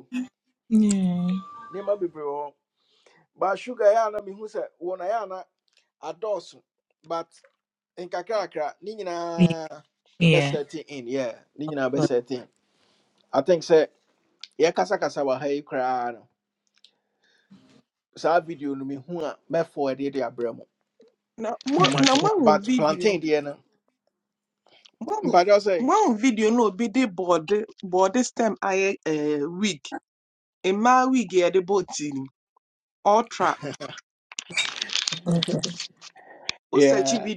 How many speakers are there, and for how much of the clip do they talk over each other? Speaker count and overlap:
3, about 7%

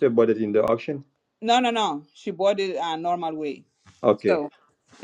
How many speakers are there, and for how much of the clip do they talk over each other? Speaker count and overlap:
2, about 2%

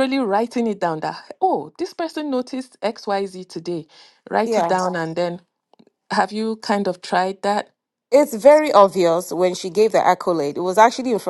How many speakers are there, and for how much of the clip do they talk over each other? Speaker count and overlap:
2, about 2%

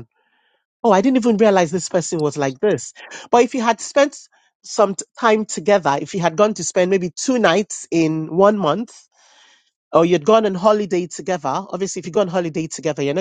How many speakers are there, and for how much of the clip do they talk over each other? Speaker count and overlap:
1, no overlap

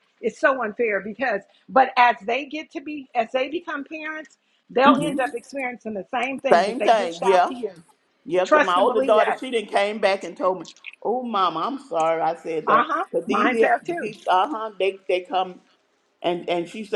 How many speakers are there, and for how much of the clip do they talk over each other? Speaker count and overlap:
2, about 20%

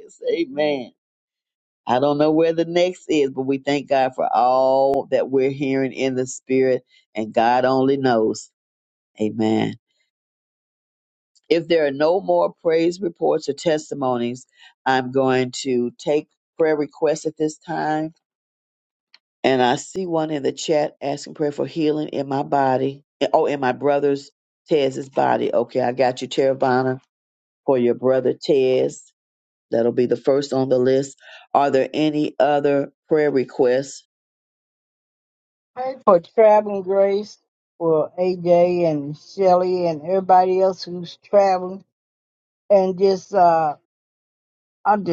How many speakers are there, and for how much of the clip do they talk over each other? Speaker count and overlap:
2, no overlap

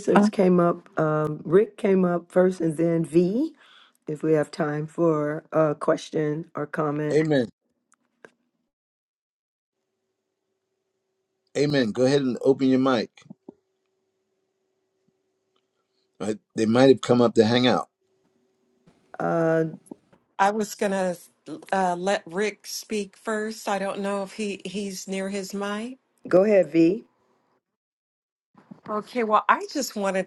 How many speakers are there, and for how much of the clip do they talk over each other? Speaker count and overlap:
3, under 1%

